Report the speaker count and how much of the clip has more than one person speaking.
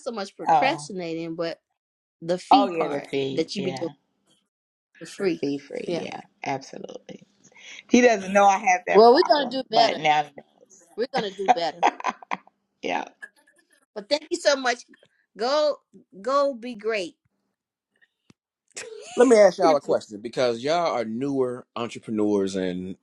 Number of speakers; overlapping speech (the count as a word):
three, about 14%